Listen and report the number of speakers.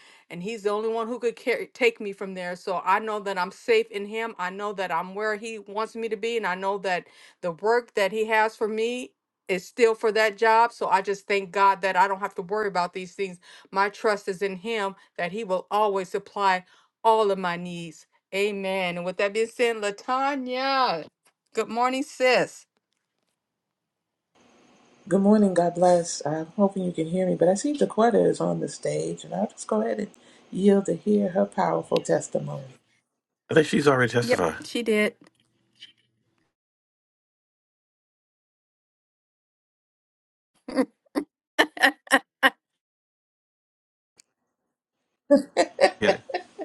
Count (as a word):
three